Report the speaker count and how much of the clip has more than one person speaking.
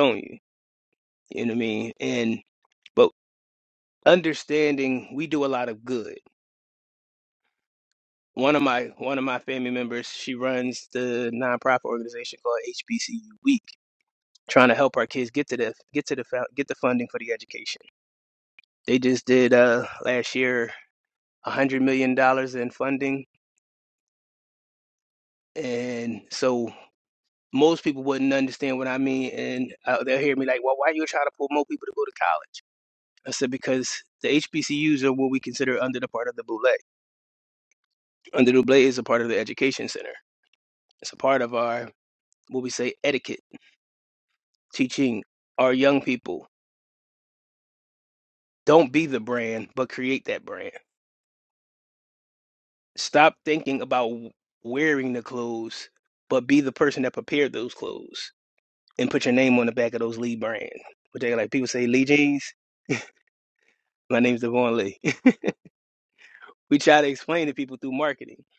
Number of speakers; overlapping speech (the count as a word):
one, no overlap